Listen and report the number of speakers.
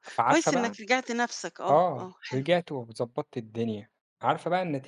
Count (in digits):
2